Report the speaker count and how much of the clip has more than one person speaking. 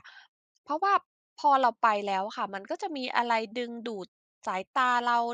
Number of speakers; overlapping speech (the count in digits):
1, no overlap